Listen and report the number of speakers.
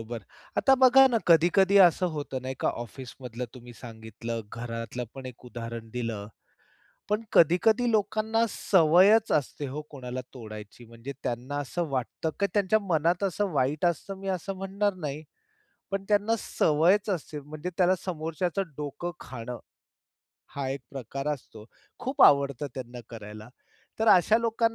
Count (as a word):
one